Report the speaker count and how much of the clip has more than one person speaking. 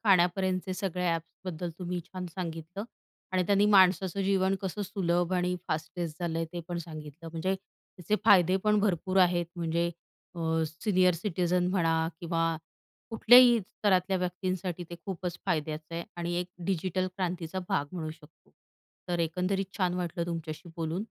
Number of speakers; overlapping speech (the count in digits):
1, no overlap